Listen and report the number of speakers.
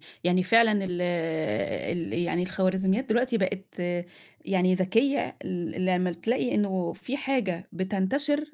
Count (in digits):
1